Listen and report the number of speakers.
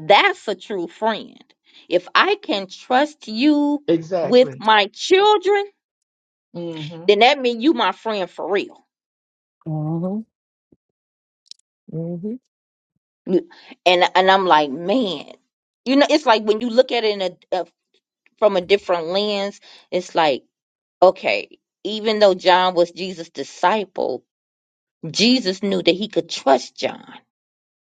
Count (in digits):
3